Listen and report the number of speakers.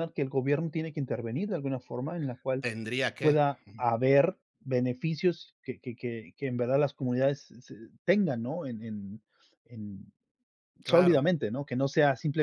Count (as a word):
two